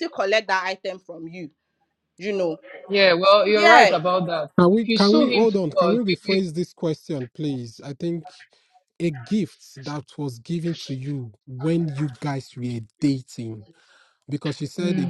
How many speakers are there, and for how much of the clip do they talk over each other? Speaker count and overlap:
three, about 16%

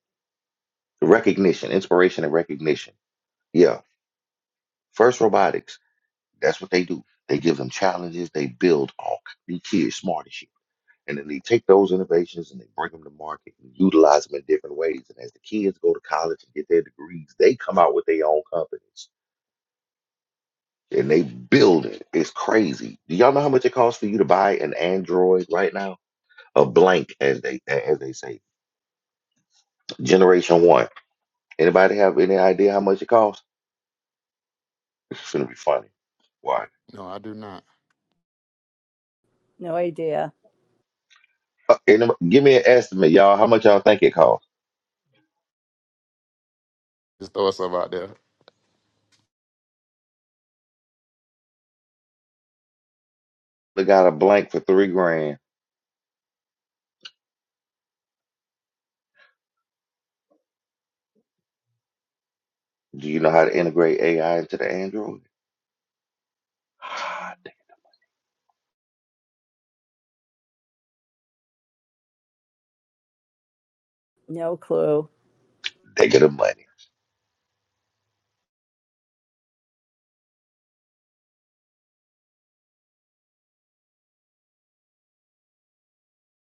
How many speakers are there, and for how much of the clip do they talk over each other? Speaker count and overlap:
three, no overlap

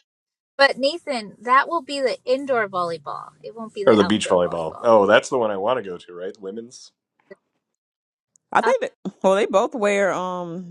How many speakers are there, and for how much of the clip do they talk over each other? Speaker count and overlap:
three, about 10%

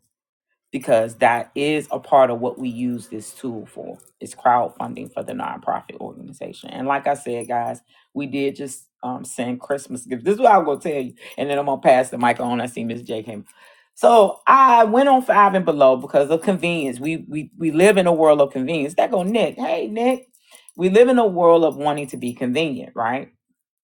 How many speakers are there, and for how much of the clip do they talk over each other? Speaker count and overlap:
one, no overlap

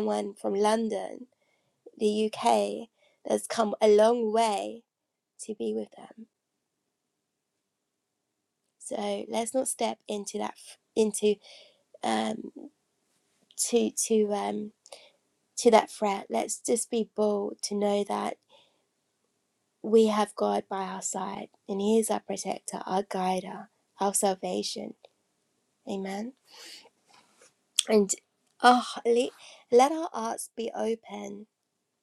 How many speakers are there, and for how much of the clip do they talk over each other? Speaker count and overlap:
one, no overlap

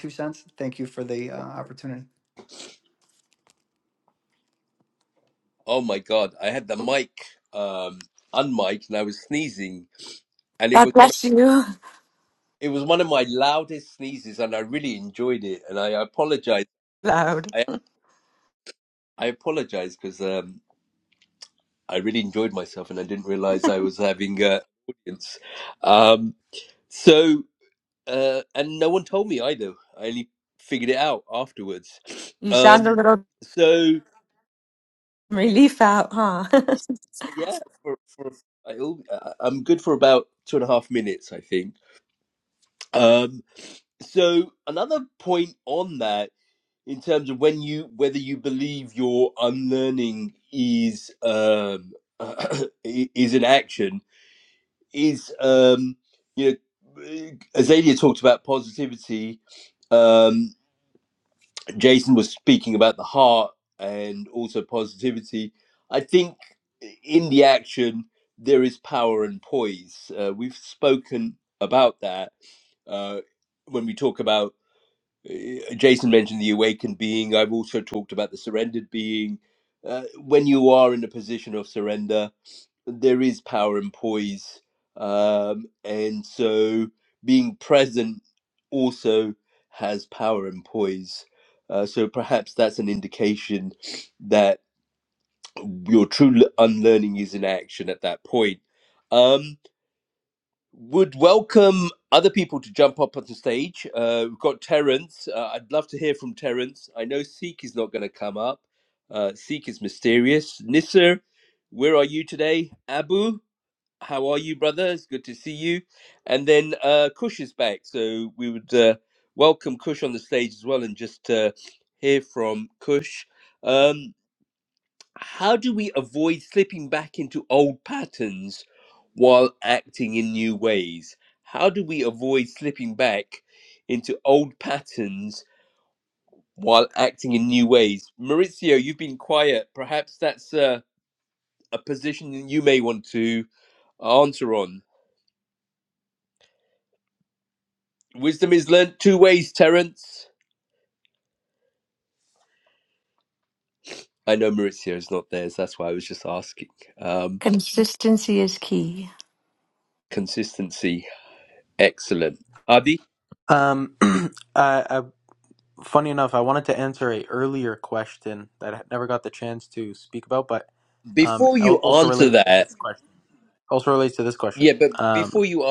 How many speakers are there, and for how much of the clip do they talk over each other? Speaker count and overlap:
four, about 2%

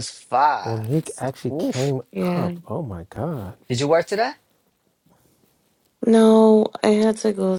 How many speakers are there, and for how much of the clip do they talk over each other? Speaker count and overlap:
three, about 14%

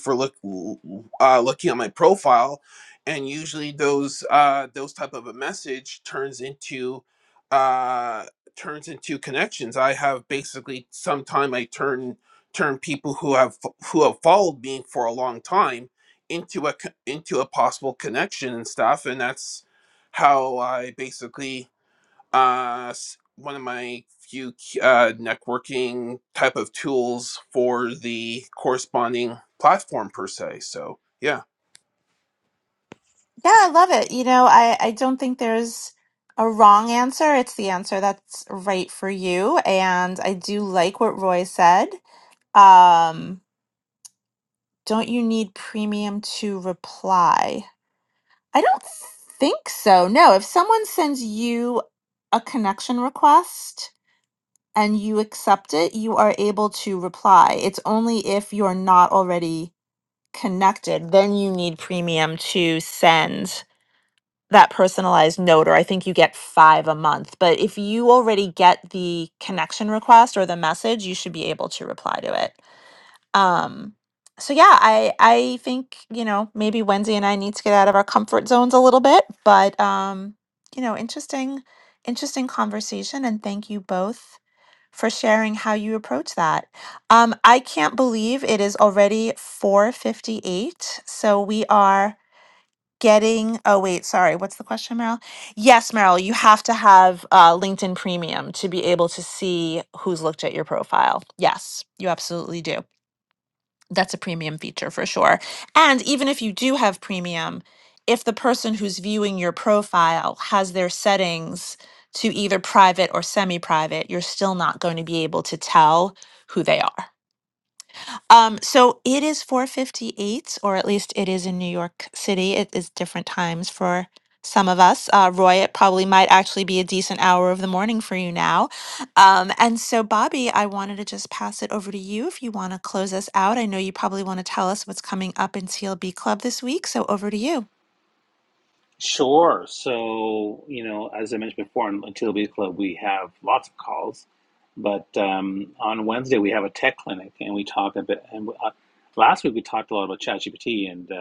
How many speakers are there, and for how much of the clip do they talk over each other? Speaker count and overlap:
three, no overlap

